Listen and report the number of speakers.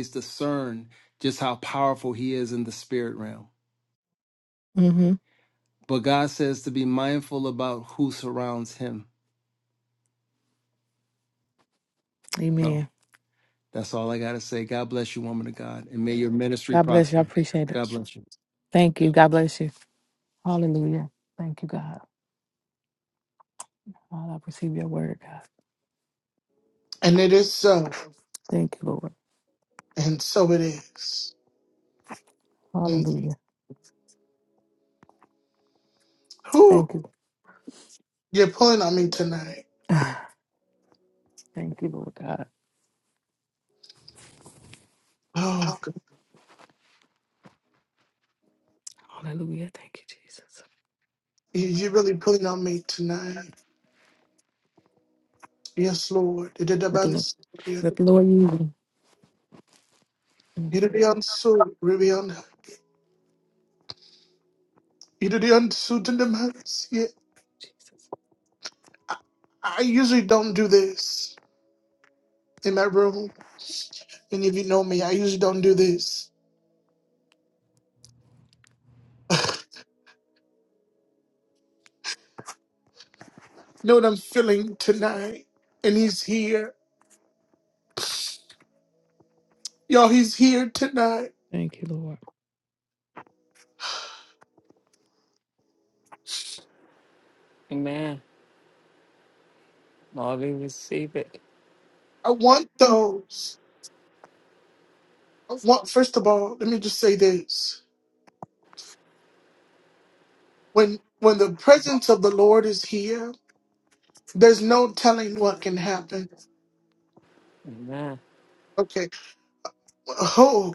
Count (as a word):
four